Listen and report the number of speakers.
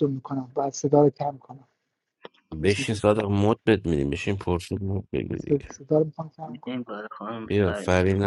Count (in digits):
3